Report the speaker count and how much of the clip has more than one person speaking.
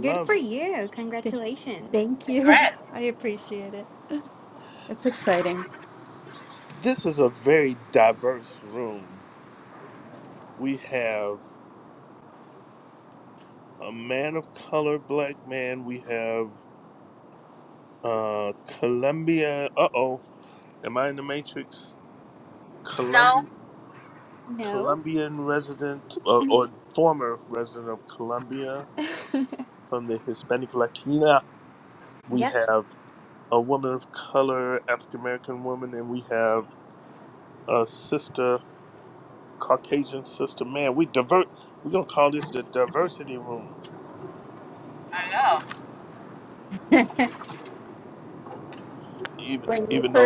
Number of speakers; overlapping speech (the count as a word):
four, about 5%